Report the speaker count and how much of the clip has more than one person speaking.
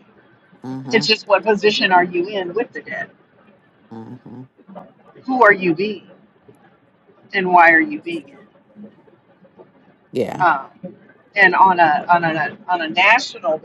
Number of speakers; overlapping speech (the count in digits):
2, about 1%